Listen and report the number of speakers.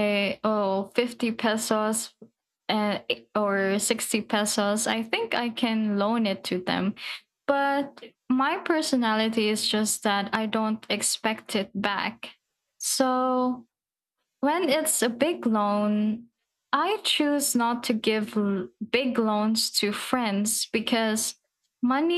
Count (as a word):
one